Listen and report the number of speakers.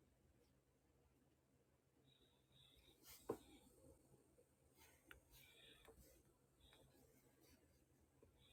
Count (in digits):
0